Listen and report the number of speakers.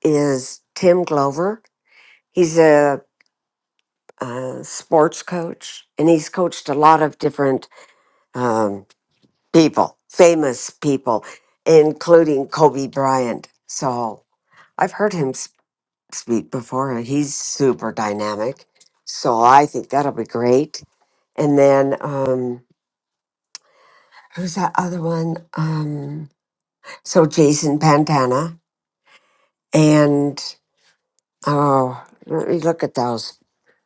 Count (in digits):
1